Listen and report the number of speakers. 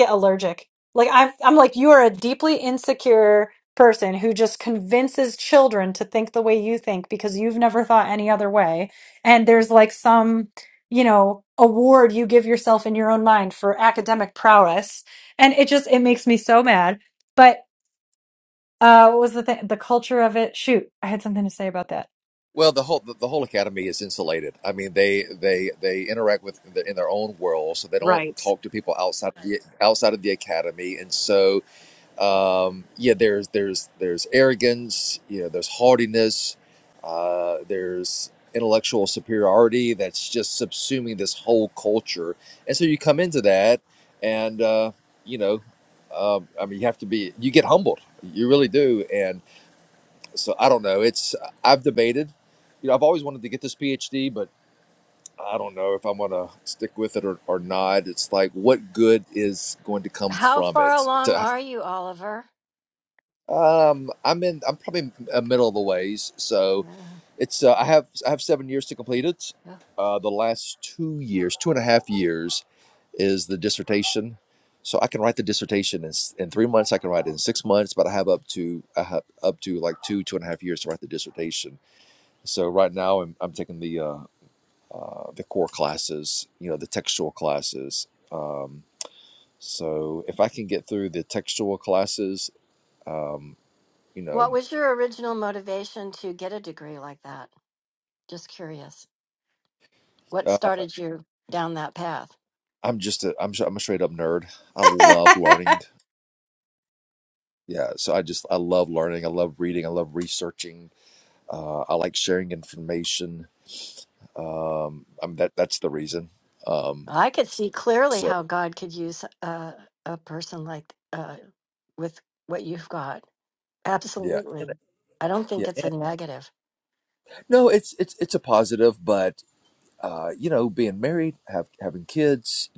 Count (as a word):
three